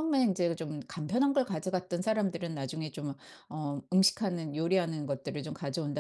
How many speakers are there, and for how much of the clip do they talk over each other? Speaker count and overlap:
one, no overlap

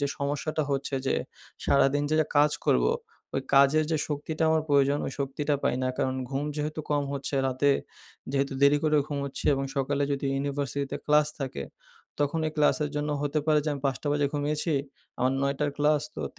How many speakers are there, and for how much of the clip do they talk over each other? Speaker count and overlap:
one, no overlap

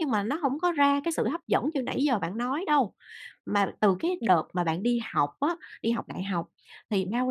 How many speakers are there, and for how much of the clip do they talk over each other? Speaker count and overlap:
one, no overlap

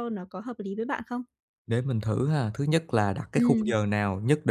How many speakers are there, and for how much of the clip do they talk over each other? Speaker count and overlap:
two, about 8%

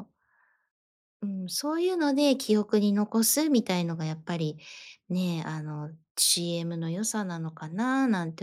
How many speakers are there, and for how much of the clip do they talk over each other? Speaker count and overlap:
one, no overlap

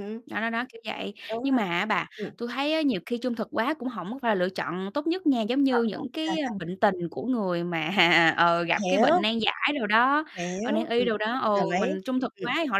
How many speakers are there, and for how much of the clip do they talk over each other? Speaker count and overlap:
two, about 23%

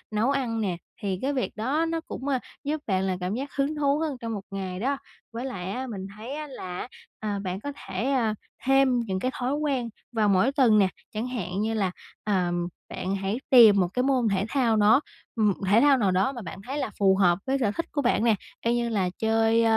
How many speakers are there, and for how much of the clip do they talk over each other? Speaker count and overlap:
one, no overlap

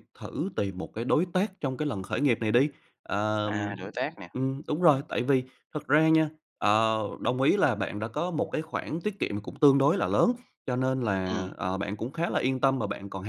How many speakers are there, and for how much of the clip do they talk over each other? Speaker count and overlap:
two, about 5%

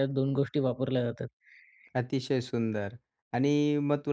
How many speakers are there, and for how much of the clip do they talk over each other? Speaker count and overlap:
two, no overlap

